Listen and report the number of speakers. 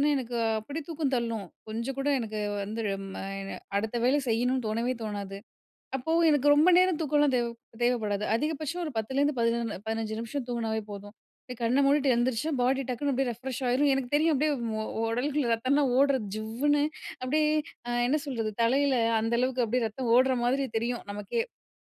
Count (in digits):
1